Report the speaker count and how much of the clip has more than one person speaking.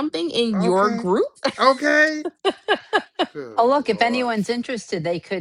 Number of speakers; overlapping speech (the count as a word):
three, about 24%